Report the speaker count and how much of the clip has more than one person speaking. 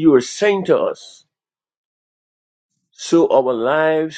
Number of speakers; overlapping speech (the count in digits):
1, no overlap